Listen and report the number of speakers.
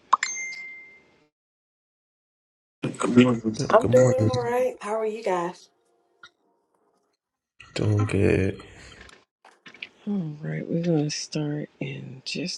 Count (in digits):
3